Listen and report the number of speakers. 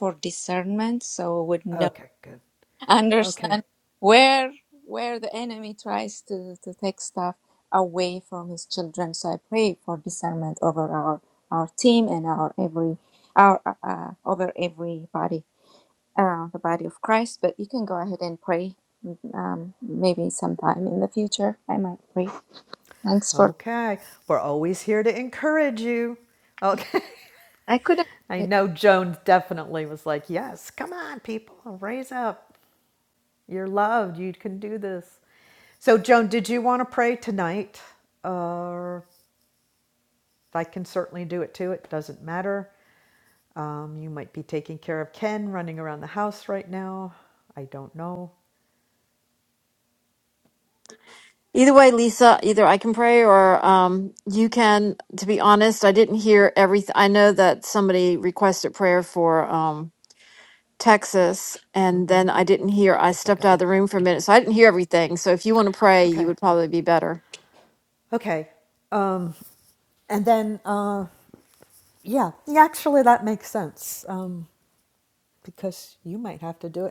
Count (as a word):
three